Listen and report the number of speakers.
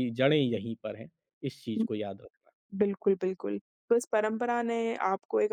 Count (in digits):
2